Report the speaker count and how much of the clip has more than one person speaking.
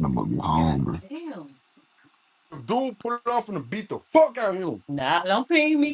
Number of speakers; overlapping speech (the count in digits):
3, about 3%